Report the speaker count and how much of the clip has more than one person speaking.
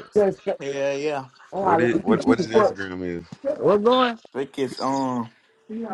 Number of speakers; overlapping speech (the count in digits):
3, about 20%